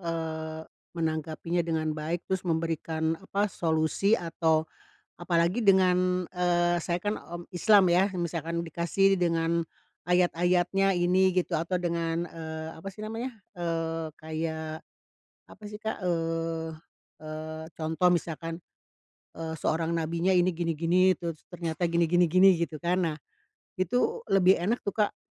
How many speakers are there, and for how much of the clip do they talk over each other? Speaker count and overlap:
one, no overlap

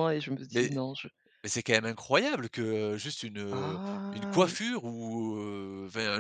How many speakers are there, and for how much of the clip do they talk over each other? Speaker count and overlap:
two, about 15%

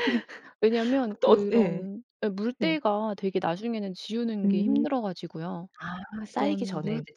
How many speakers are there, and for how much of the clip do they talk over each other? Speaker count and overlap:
two, about 29%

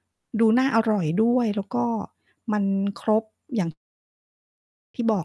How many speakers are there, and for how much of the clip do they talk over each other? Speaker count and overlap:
one, no overlap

